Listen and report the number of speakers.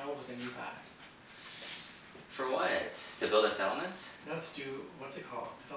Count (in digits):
2